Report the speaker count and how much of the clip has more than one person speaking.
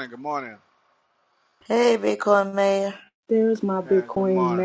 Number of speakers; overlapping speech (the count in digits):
3, about 17%